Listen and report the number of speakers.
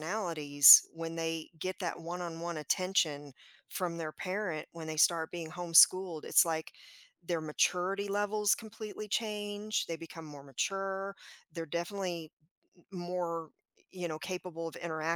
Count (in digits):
1